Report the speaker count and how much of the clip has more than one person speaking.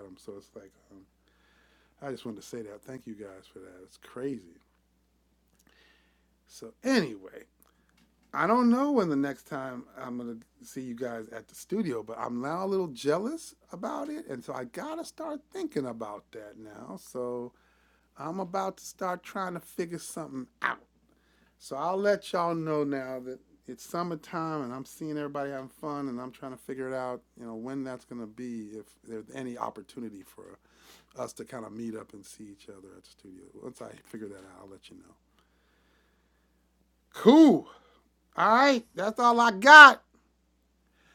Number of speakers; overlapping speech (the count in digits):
1, no overlap